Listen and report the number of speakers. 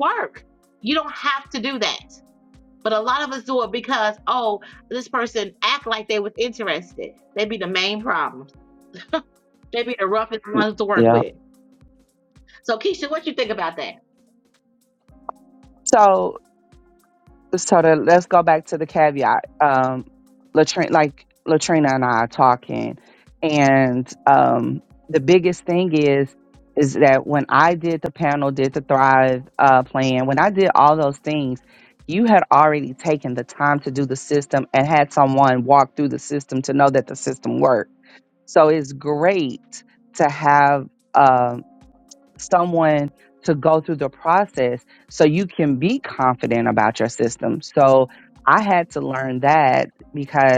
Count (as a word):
two